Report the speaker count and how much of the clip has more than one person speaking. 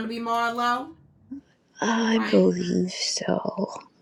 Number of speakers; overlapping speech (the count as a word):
two, about 8%